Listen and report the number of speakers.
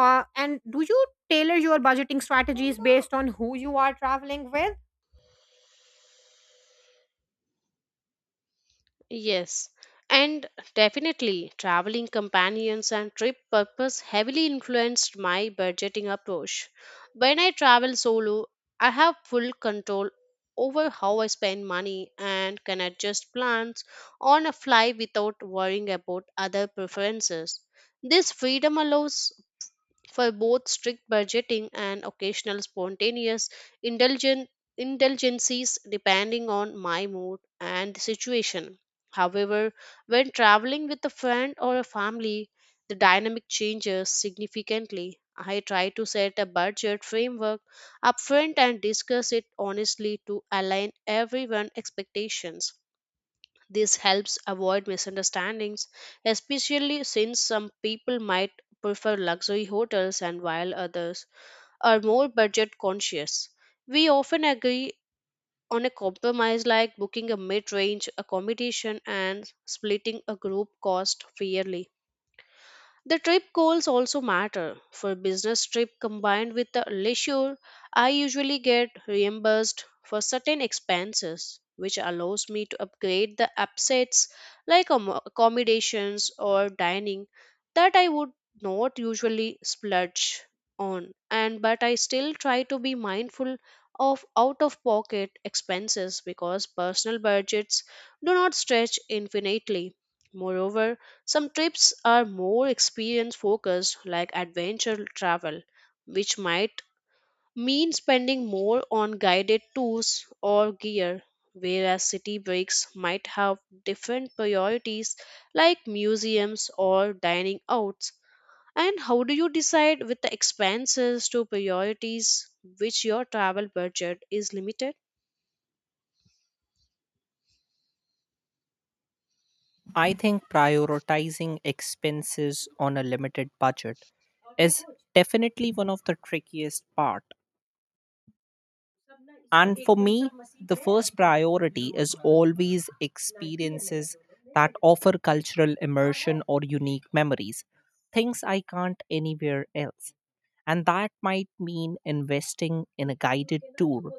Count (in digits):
3